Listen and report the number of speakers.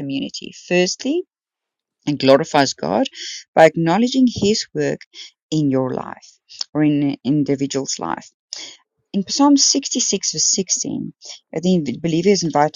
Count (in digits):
1